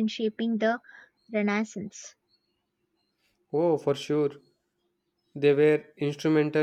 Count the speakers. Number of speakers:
2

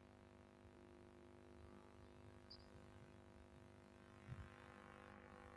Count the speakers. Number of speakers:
0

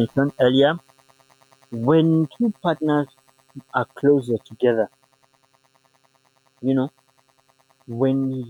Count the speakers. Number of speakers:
1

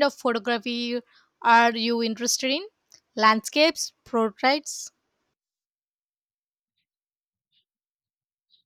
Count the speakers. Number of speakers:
1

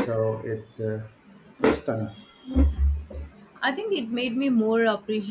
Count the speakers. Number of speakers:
2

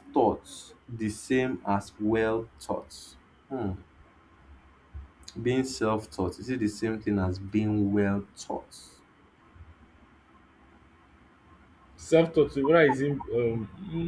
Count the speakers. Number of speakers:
2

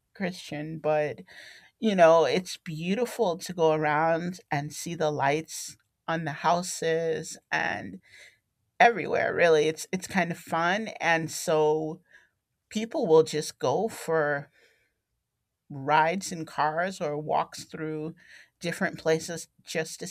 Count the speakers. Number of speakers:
1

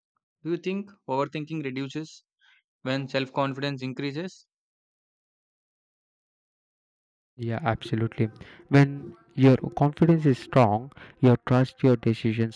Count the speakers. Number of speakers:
2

